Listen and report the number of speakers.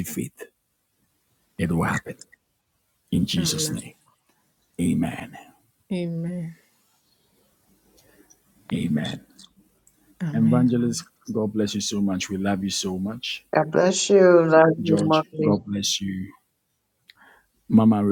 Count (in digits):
3